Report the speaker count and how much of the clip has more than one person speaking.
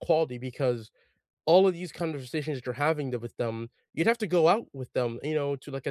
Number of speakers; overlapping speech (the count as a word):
one, no overlap